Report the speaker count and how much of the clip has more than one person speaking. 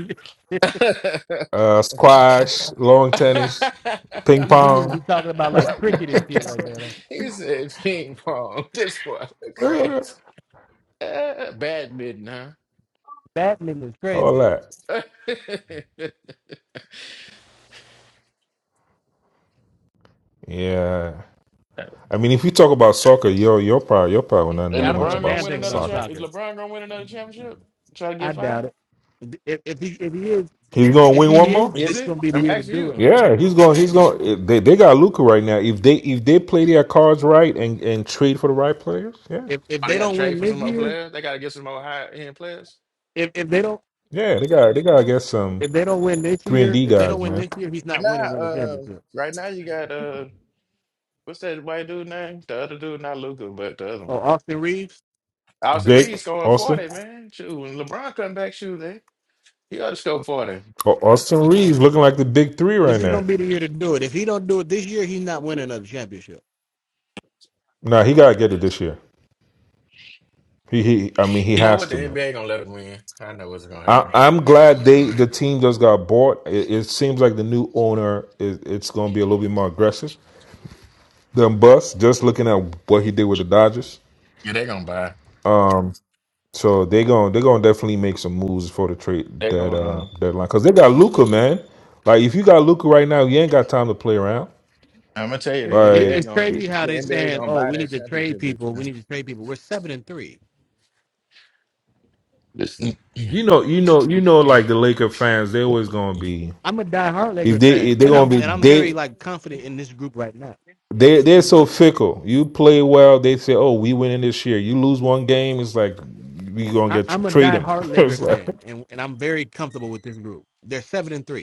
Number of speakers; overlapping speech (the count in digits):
3, about 13%